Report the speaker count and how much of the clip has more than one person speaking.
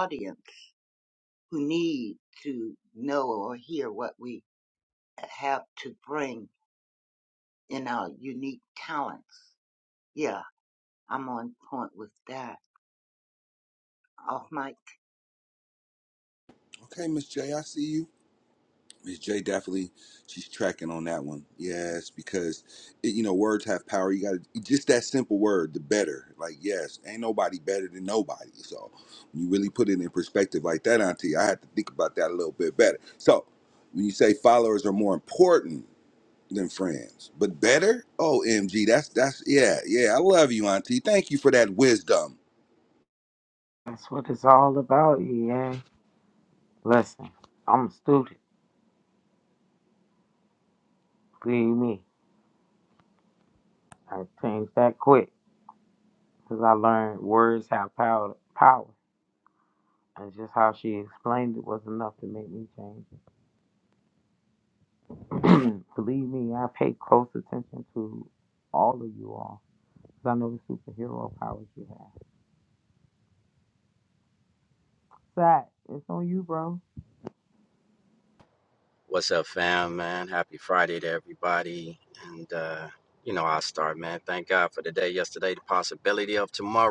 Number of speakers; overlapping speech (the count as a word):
four, no overlap